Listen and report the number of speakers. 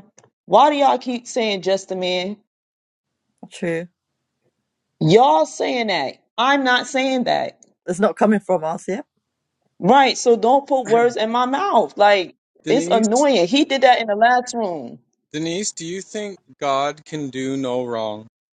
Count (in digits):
3